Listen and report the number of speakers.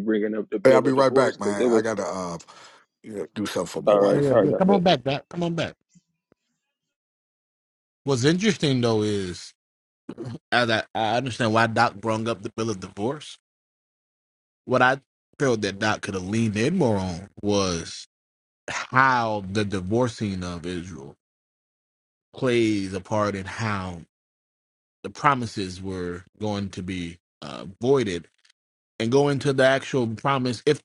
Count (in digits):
3